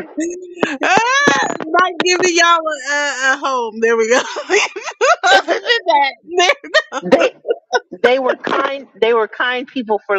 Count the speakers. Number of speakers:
2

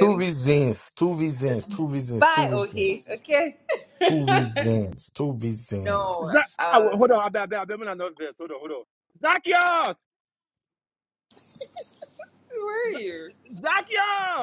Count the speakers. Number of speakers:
3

